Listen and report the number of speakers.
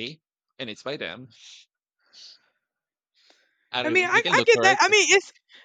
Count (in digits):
2